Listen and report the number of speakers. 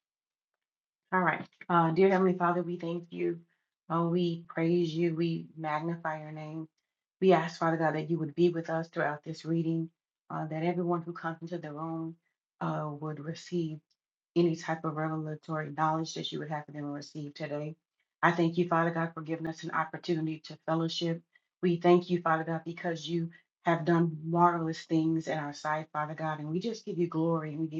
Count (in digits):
1